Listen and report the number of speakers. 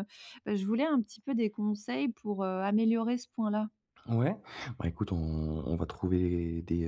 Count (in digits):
2